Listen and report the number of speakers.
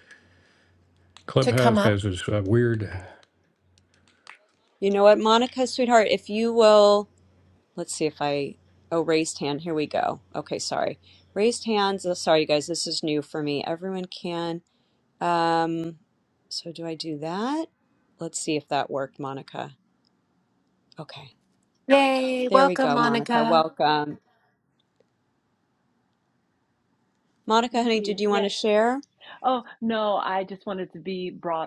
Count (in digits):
4